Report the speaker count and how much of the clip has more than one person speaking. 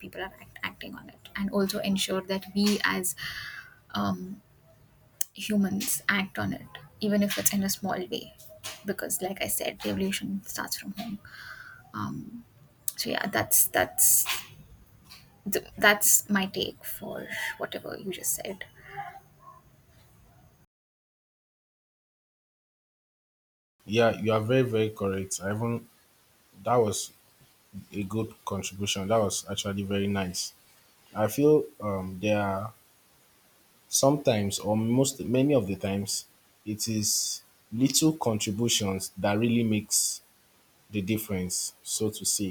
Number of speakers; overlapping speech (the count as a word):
two, no overlap